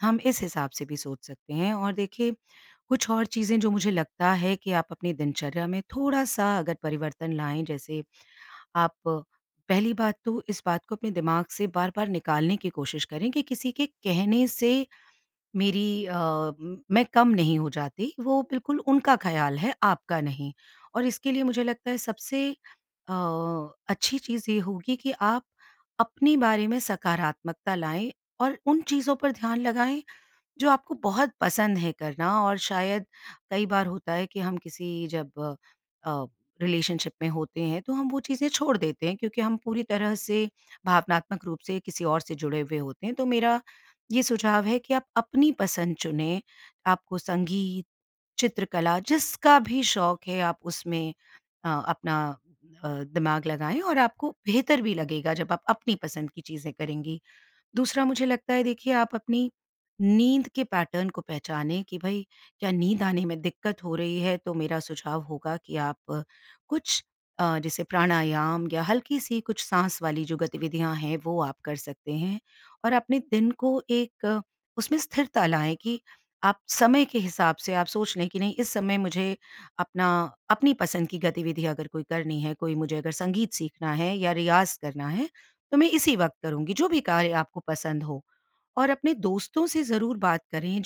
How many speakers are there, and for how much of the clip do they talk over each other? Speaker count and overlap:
1, no overlap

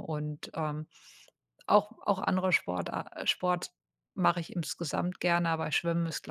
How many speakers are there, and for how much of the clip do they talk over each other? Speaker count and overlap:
1, no overlap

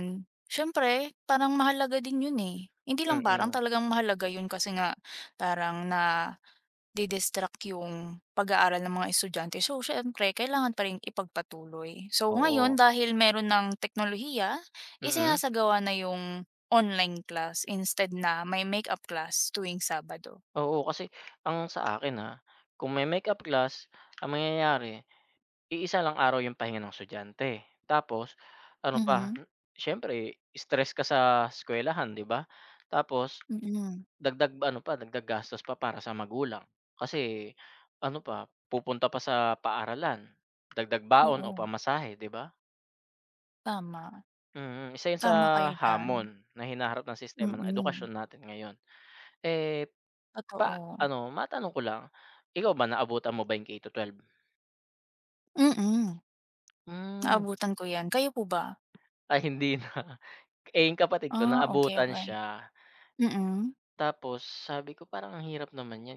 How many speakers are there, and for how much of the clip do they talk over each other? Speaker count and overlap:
2, about 8%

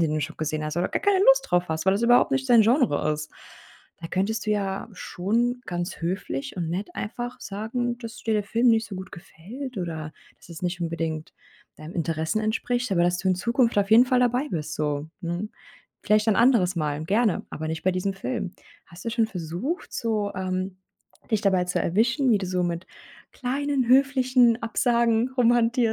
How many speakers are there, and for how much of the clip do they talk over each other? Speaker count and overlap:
1, no overlap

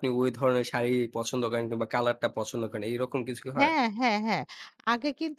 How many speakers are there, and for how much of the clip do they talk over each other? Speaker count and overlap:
2, about 3%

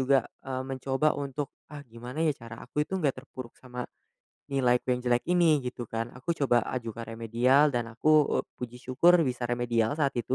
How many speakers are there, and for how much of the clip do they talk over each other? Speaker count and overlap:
1, no overlap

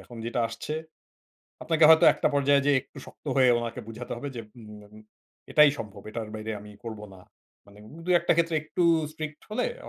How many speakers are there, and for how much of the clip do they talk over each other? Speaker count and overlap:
1, no overlap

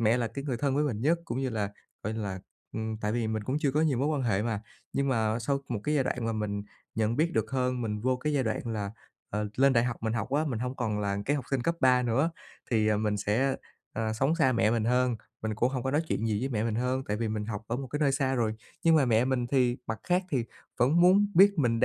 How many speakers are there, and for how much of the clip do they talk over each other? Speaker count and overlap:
1, no overlap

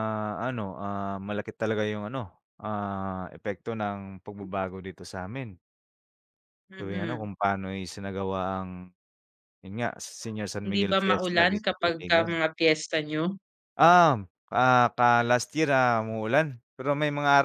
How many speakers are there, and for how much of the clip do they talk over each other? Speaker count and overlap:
2, about 12%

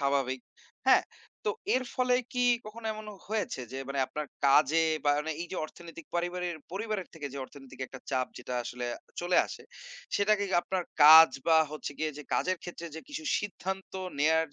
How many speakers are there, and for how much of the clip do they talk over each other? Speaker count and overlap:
1, no overlap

